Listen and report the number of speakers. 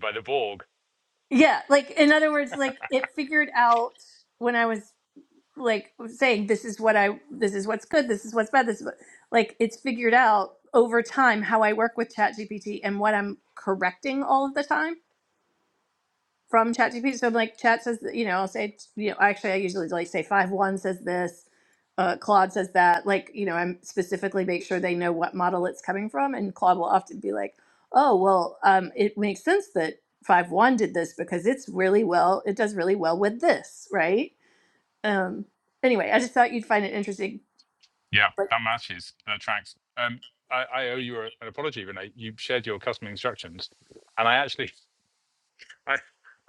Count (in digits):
2